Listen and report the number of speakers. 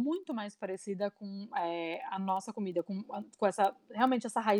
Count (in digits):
1